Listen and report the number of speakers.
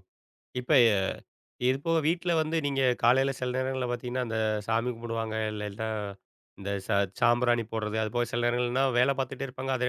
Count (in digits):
1